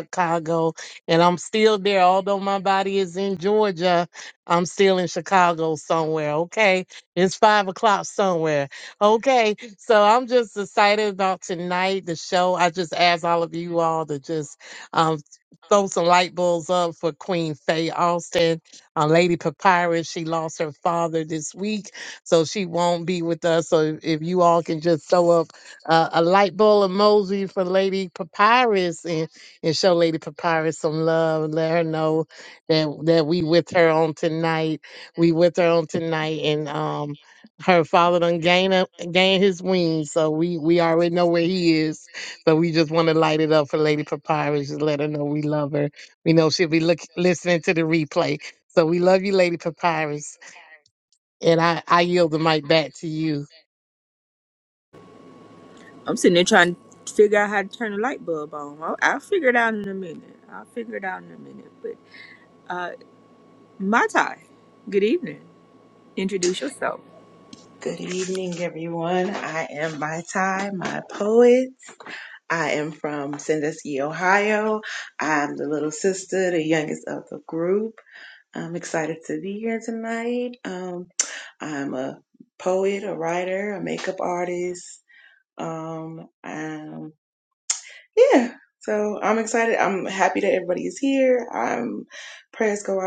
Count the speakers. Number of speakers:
3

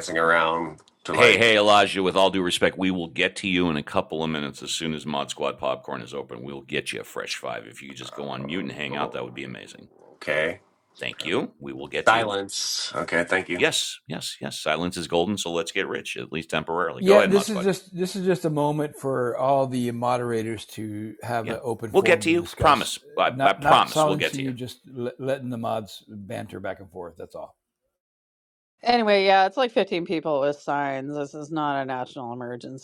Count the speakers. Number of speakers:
4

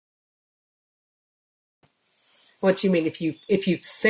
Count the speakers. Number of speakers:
1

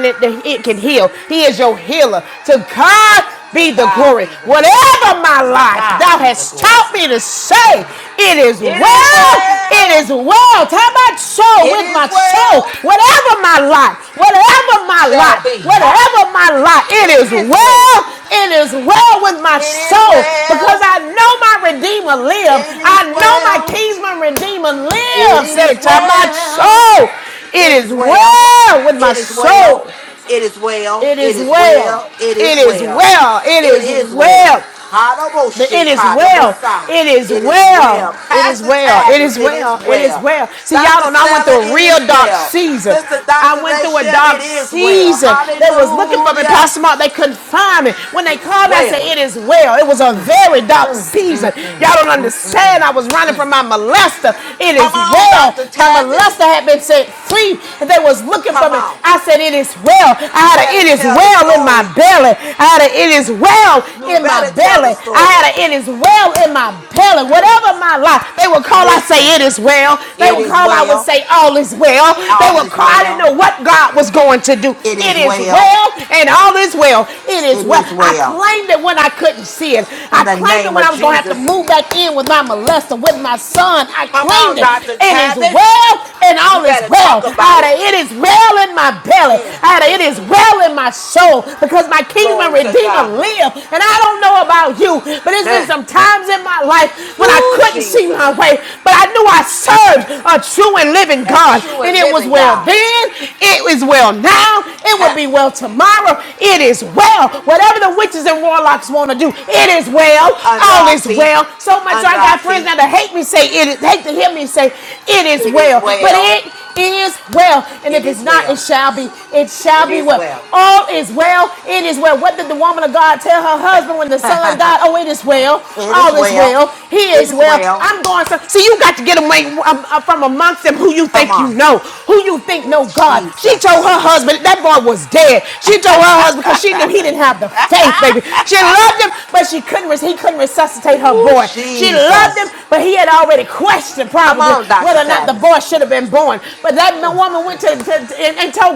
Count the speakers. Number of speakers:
2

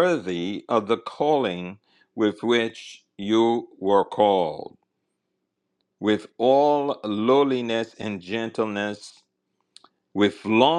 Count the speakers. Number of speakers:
1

